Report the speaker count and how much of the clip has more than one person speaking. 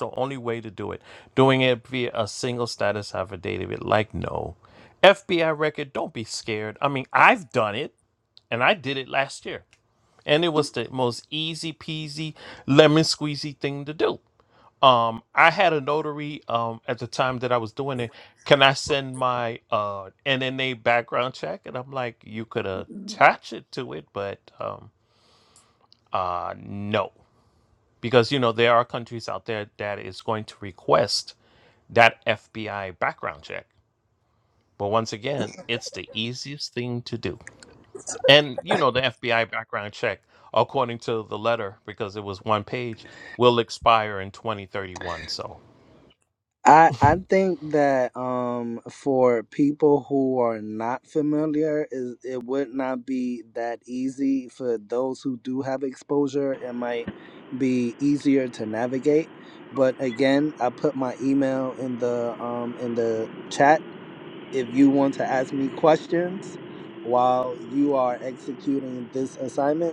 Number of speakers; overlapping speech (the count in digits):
2, no overlap